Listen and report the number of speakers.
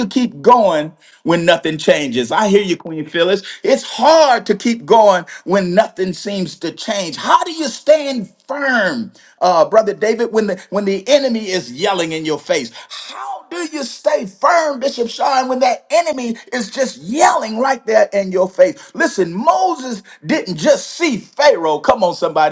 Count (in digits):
1